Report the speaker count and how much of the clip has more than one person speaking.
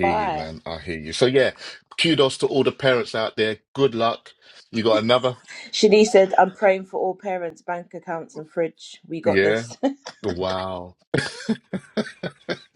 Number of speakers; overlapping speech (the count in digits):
2, about 7%